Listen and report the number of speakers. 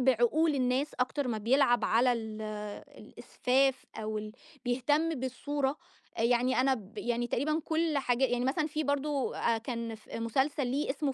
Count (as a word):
one